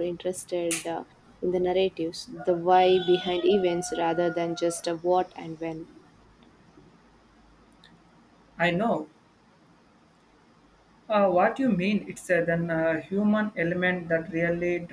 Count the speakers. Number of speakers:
2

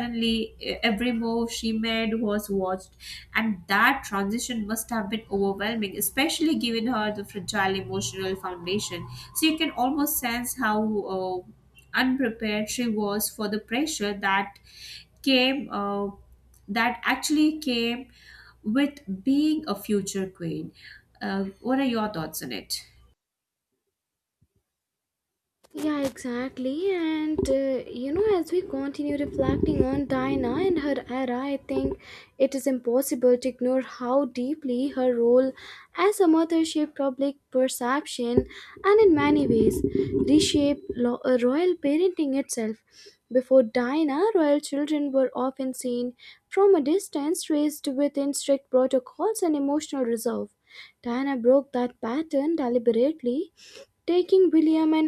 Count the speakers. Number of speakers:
2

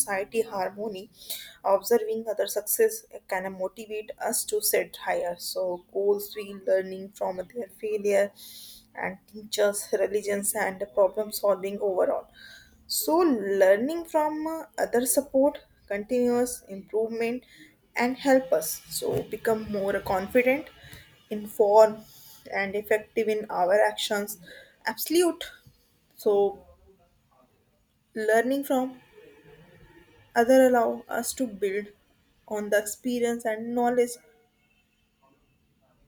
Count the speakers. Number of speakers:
1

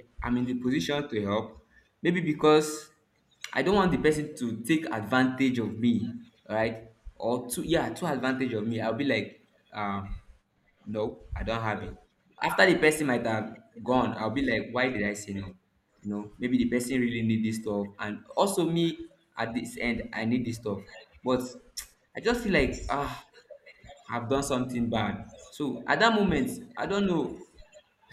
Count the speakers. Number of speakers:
1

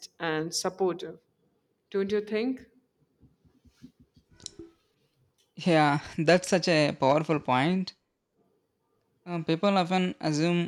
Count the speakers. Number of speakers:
2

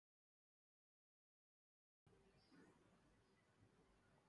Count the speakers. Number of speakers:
0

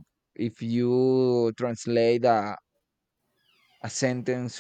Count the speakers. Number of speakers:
1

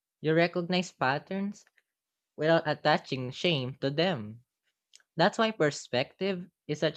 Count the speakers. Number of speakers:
1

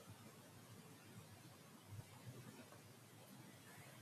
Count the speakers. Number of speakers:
0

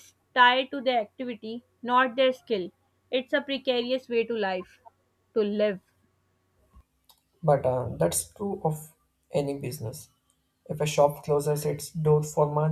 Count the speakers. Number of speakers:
2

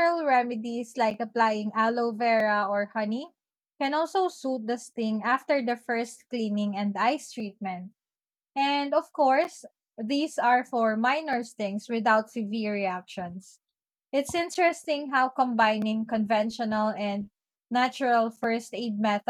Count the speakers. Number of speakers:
1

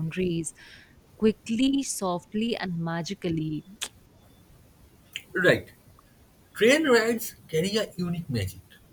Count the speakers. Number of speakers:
2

